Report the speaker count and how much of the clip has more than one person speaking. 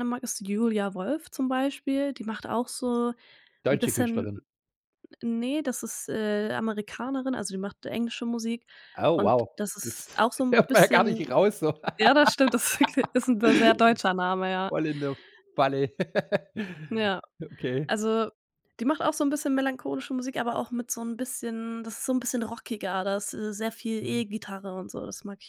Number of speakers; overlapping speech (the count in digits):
2, about 12%